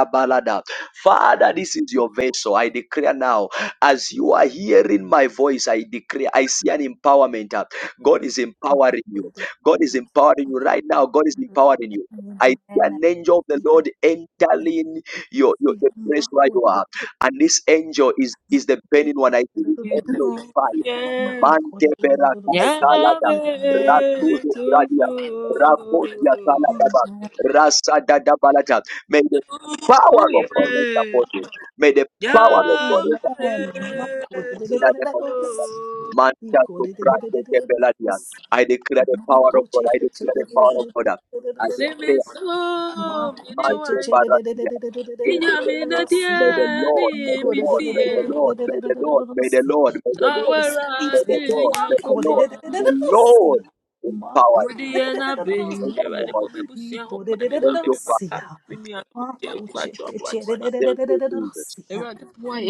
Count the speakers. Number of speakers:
three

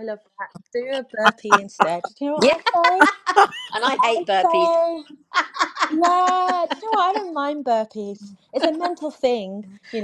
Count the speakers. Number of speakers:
two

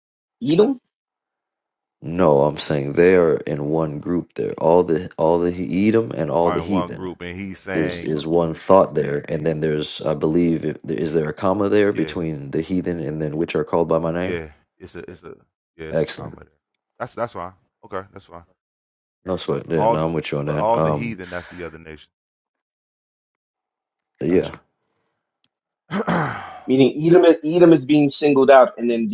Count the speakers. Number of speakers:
three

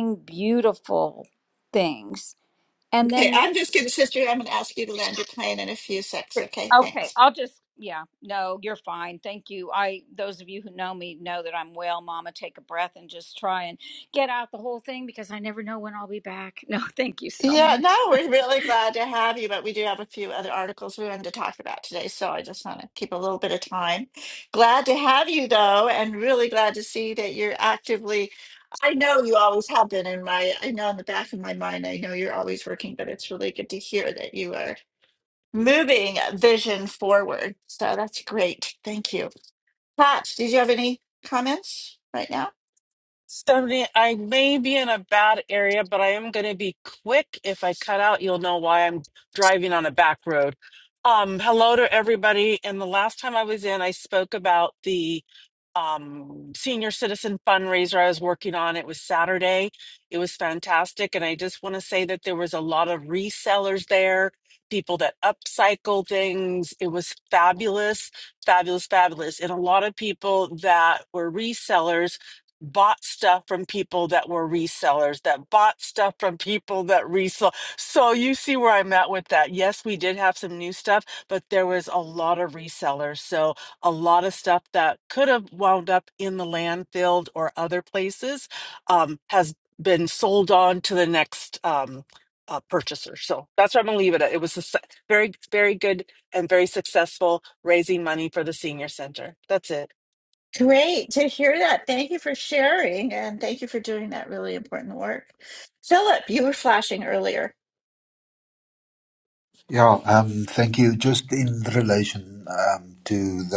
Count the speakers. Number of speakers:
four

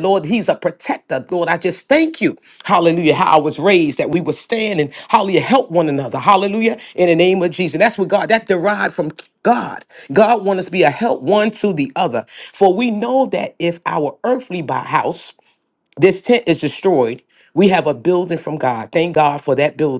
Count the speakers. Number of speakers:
one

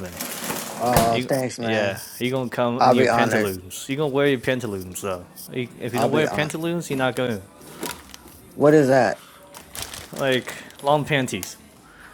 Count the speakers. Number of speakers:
two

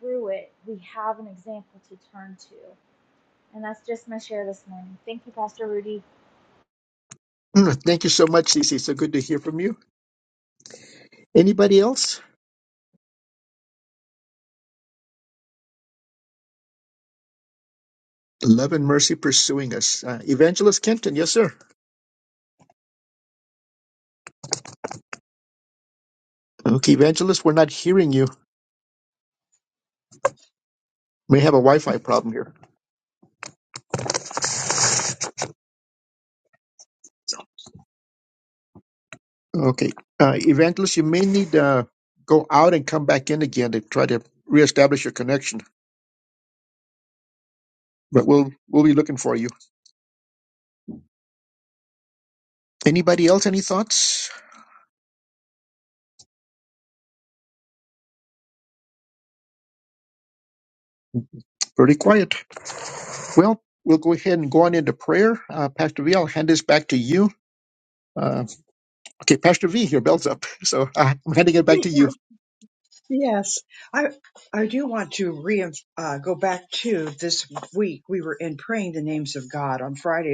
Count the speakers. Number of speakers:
three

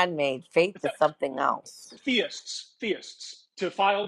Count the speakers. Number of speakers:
two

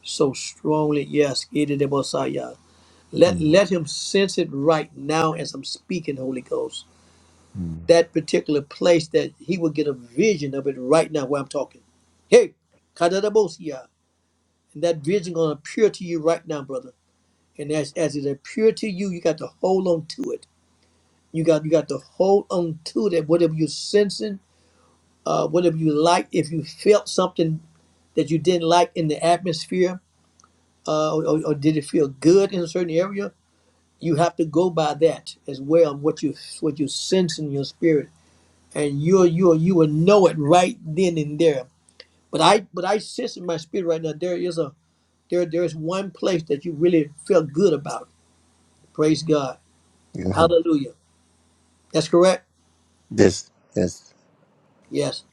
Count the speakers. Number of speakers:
two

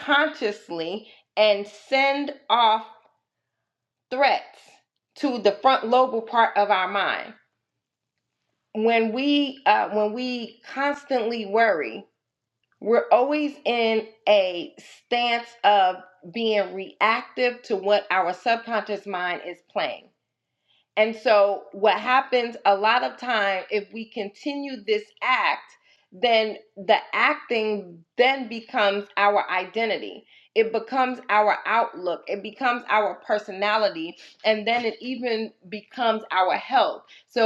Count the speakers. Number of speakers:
one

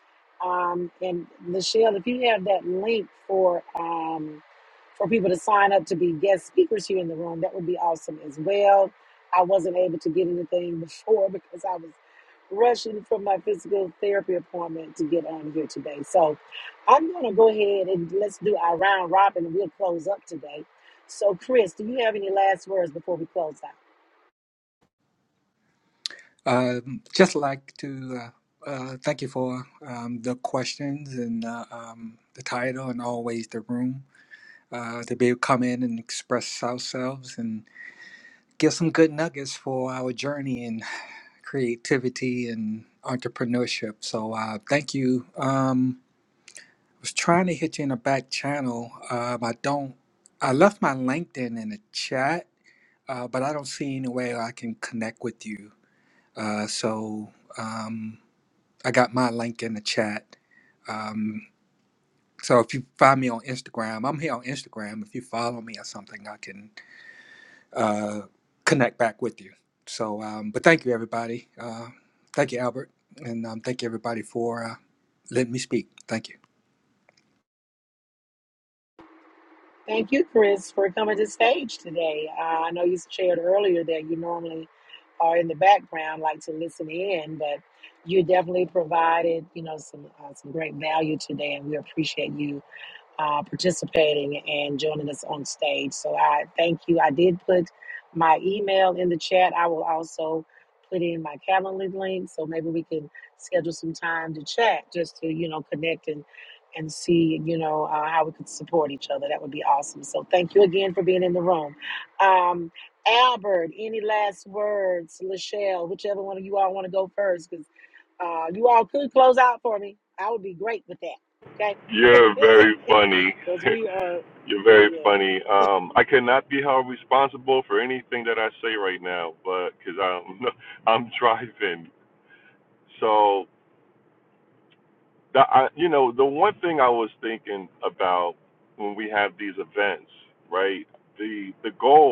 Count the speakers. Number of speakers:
three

